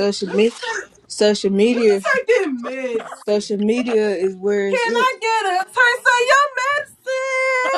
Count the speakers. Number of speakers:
two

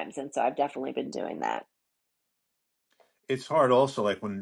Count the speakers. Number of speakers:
two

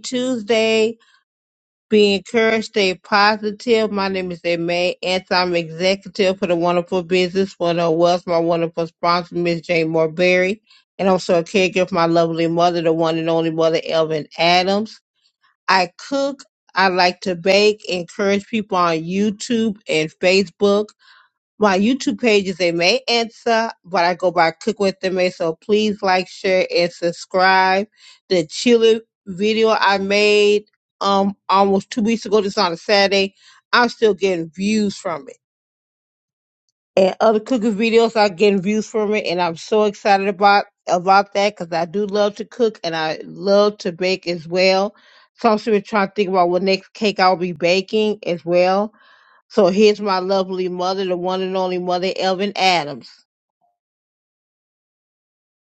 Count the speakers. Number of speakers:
one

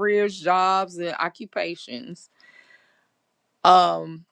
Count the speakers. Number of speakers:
one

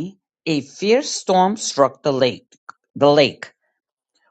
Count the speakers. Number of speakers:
one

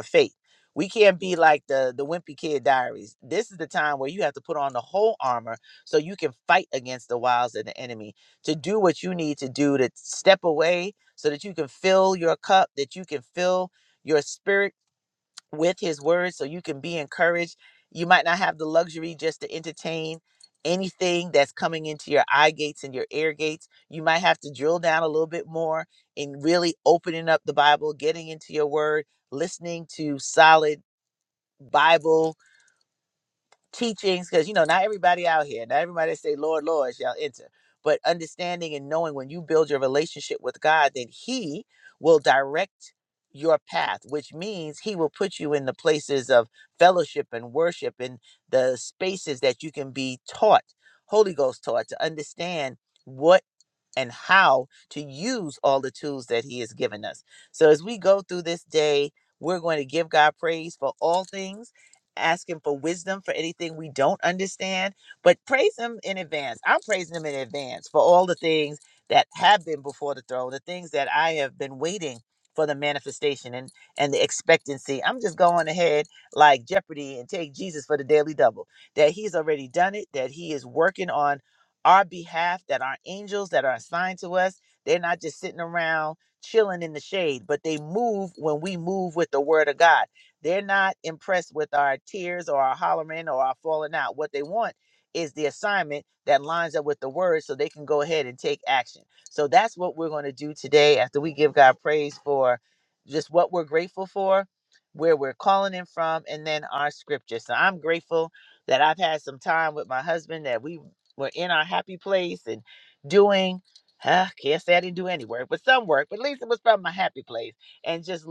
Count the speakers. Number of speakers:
one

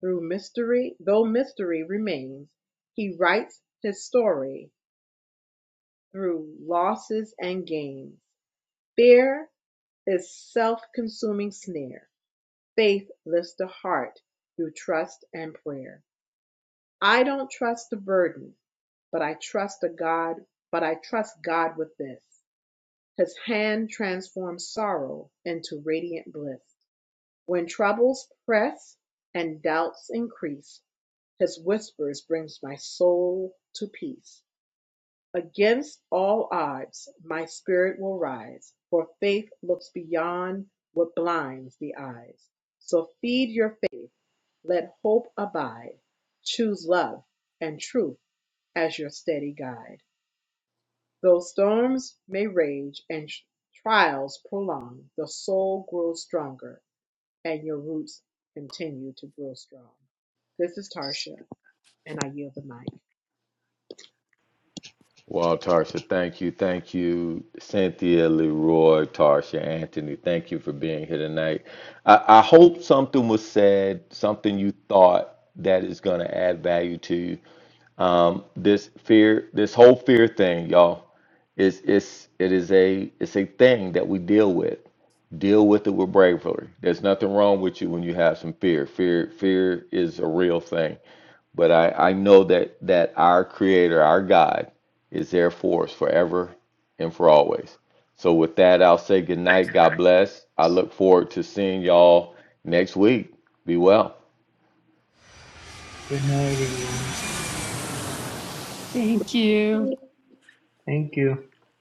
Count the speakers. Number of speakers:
four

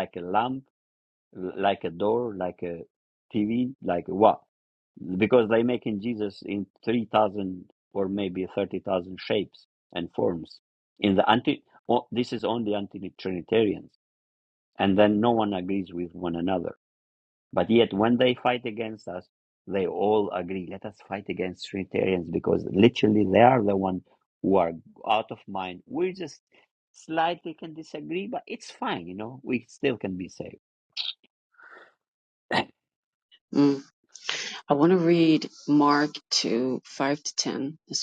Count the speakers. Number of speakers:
two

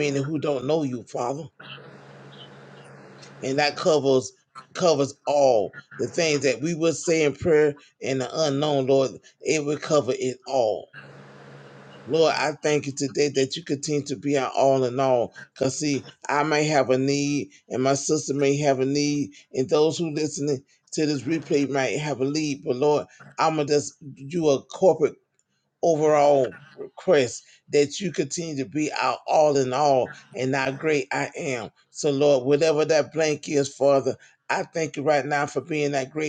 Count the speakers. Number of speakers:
one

